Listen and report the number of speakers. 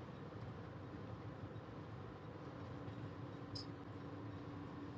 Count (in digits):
0